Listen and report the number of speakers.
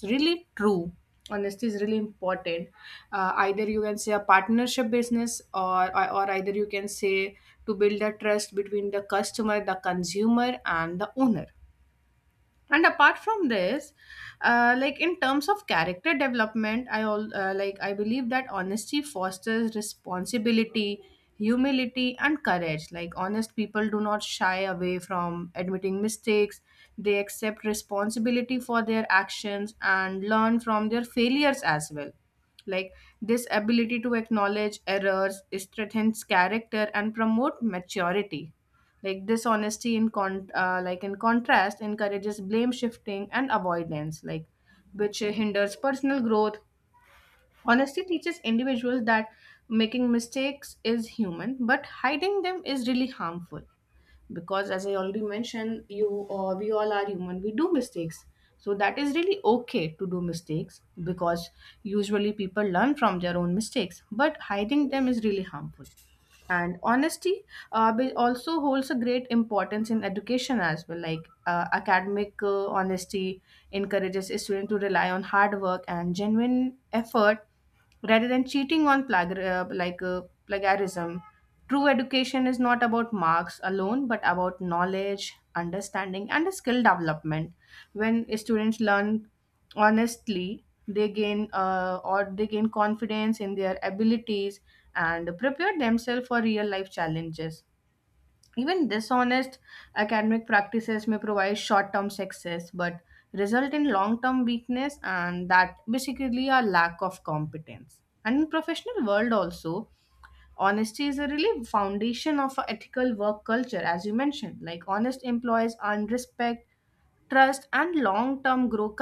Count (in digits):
1